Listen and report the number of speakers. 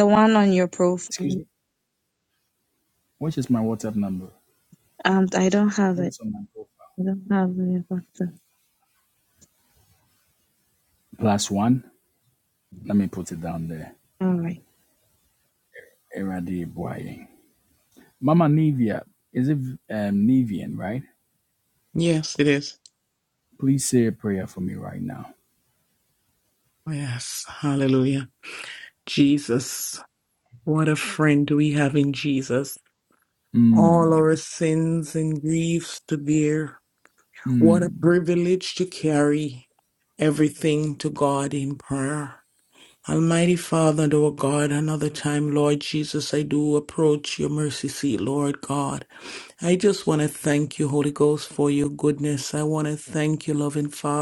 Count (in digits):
3